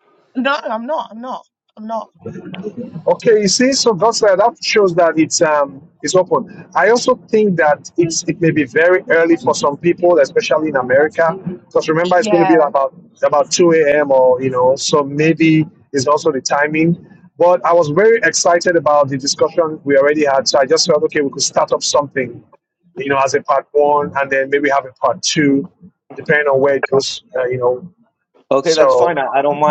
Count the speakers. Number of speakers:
3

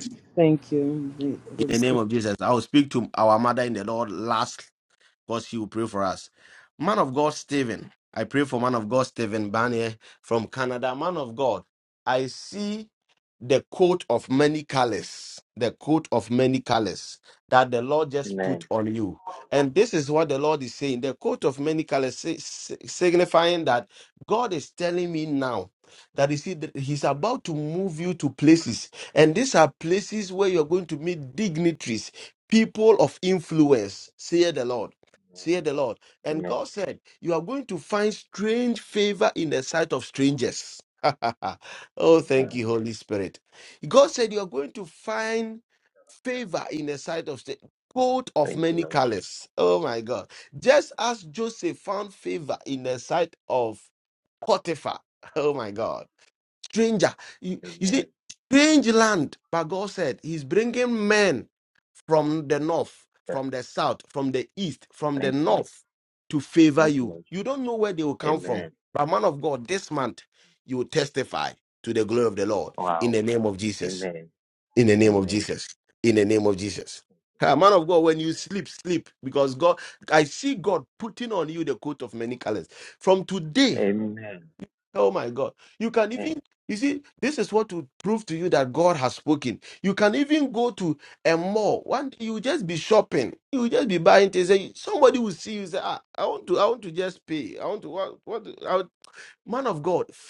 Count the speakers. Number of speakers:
3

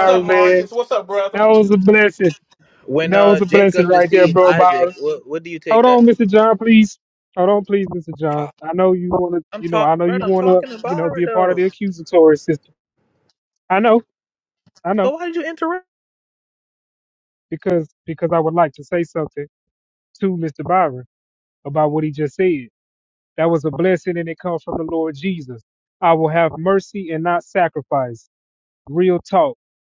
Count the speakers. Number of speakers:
3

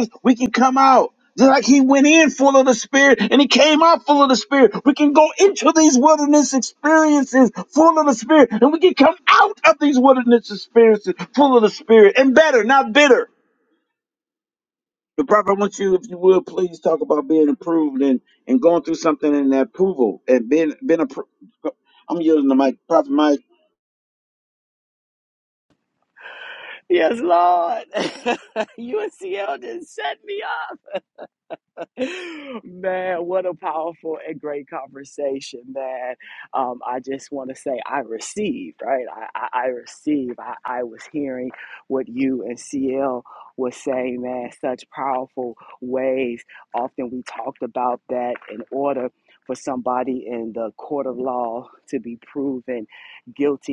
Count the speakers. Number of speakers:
2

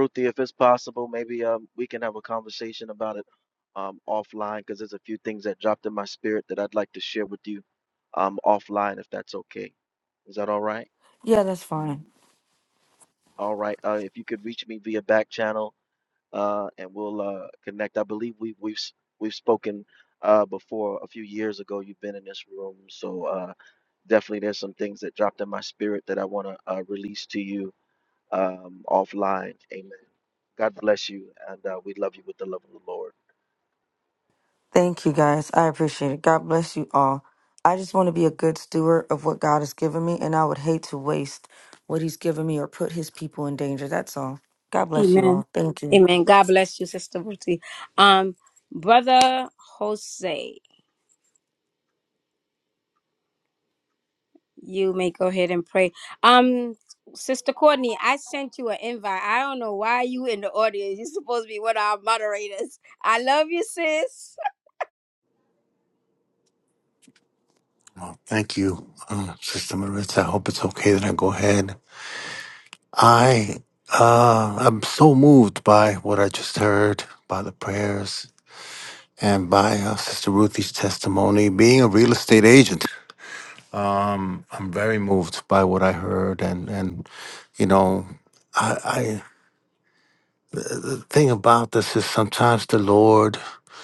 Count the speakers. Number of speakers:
4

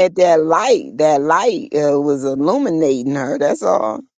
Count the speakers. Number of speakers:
1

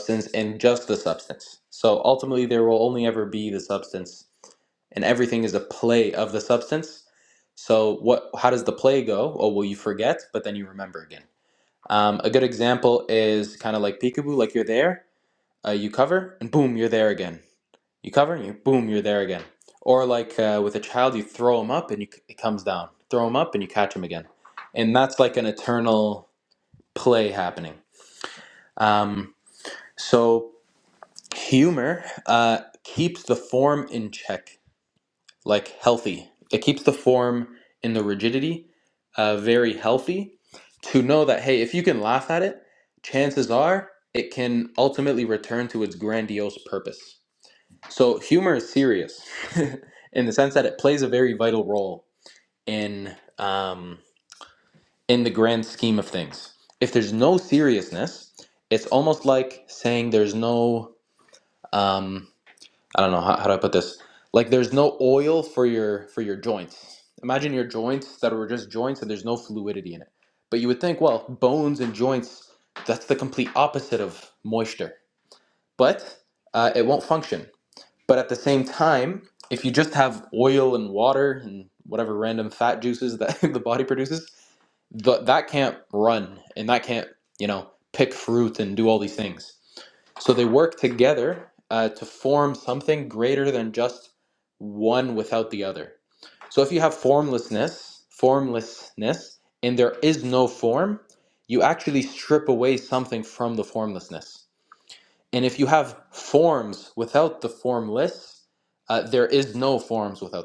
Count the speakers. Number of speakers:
1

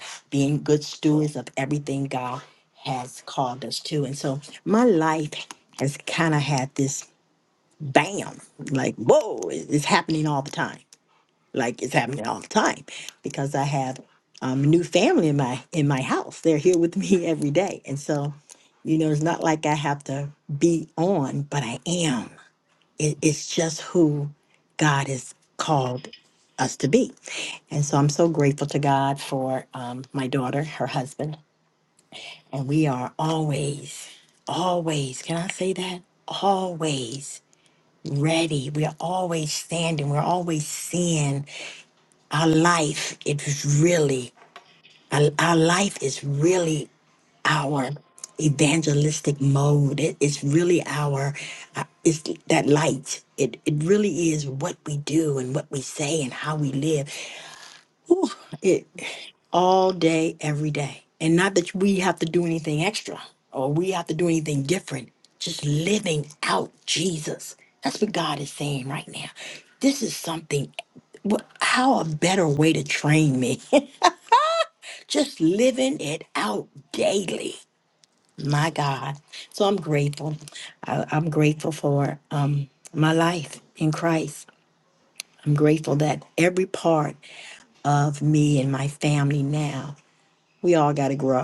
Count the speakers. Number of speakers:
1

